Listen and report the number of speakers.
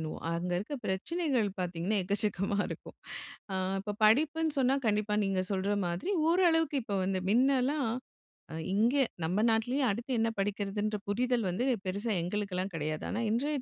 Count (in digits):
1